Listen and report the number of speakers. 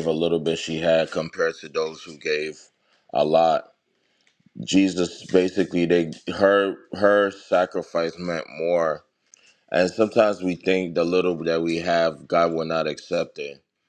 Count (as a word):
one